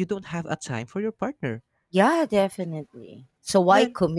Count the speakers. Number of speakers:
2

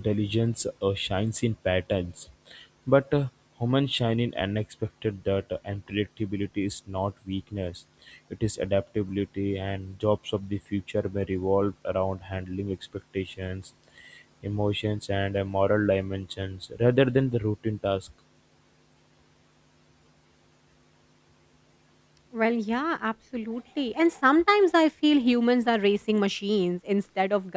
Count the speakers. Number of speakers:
2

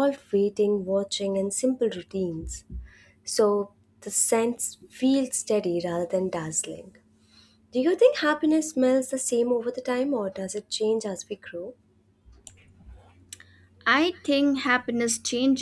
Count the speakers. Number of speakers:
2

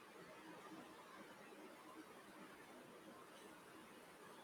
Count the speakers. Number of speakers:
0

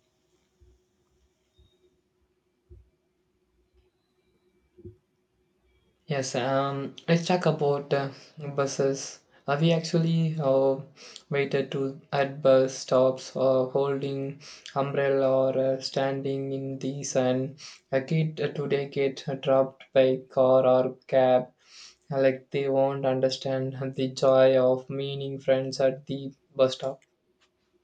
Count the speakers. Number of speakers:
1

